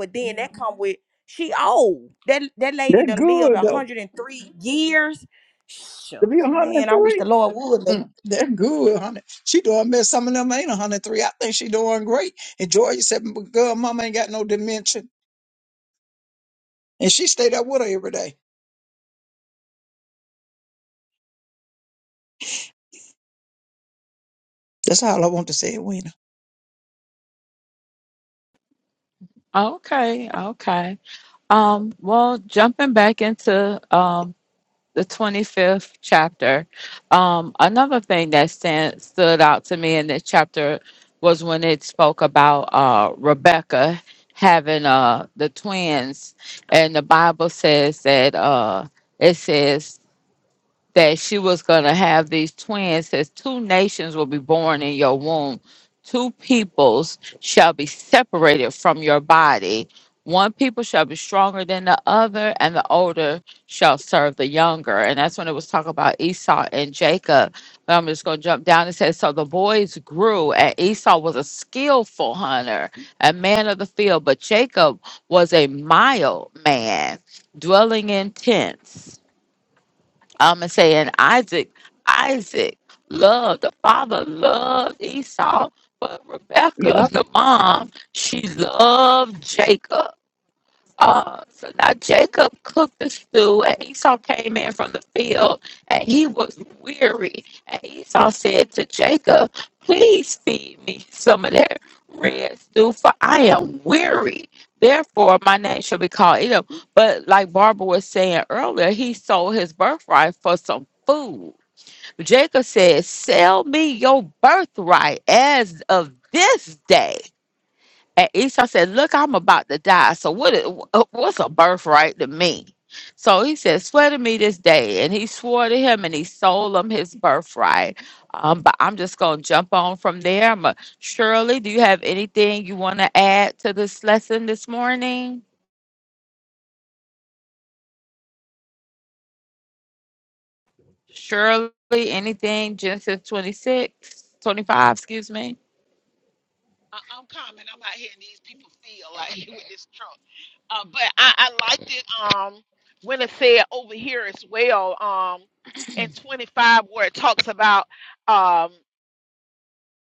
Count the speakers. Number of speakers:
4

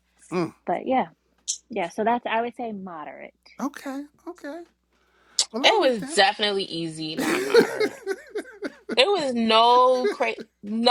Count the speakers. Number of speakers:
3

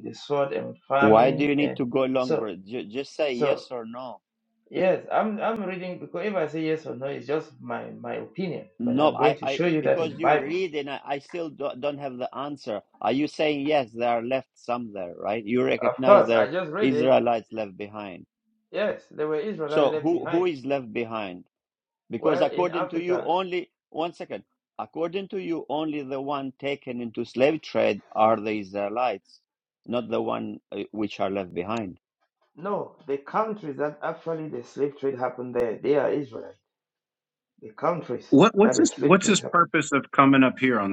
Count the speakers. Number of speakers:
3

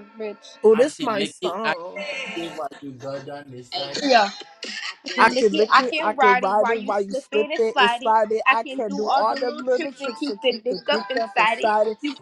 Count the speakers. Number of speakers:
3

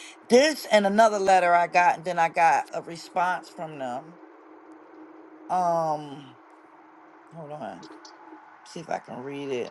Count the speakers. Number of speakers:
1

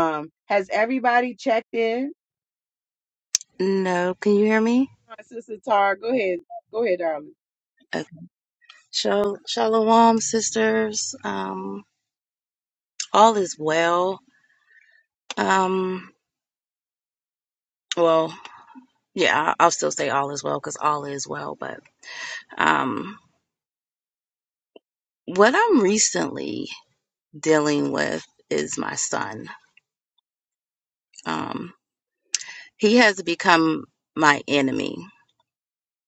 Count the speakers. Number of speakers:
2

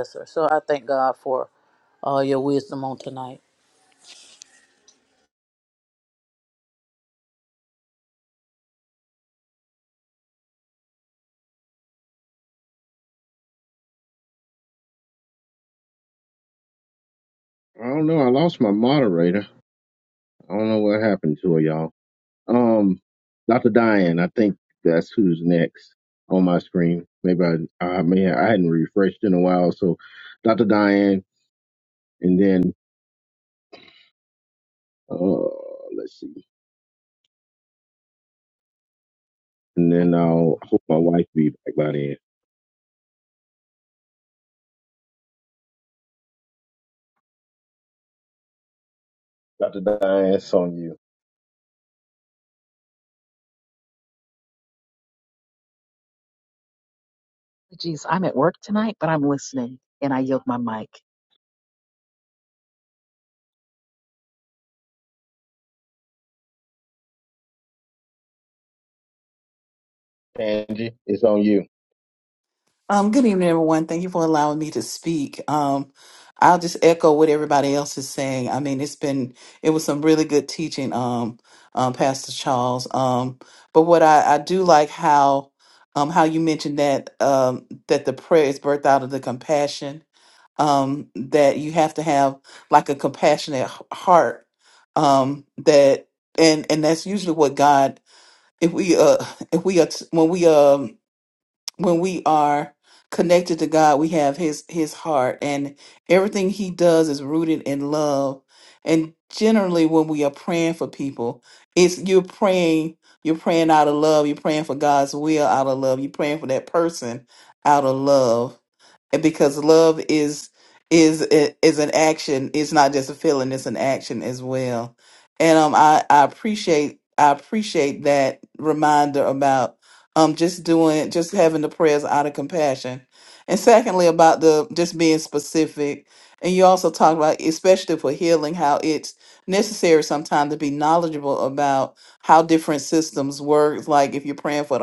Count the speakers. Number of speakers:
4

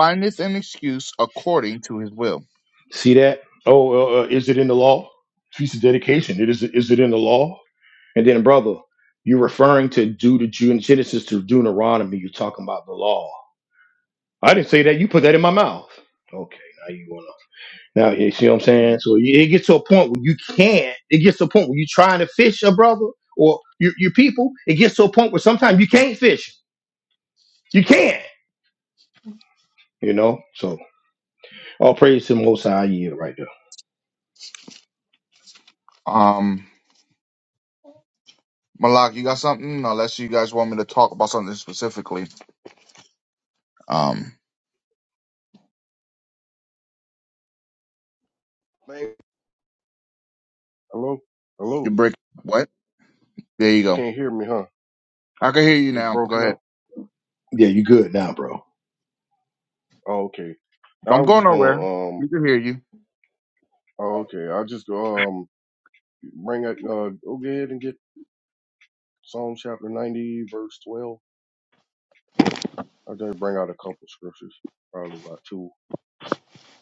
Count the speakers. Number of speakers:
3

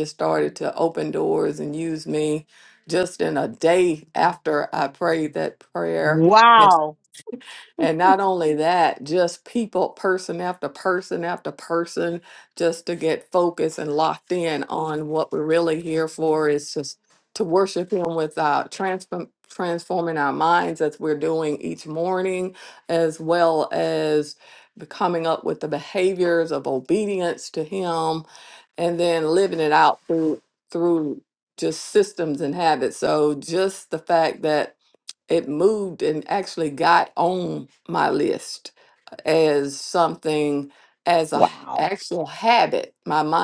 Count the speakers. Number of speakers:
2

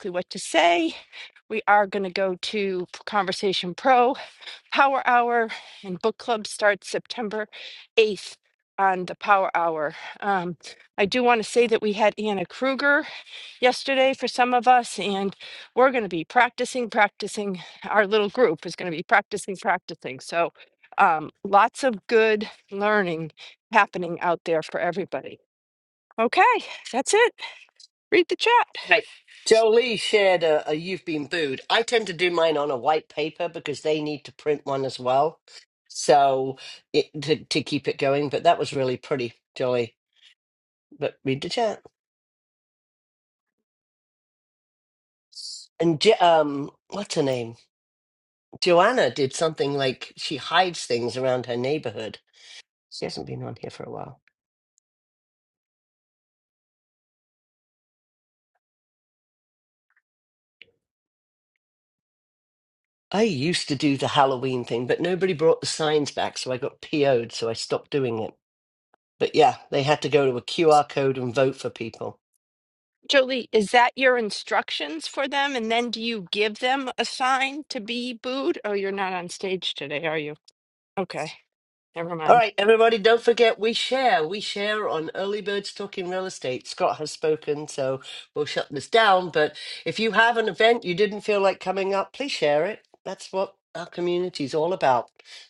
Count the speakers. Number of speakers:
2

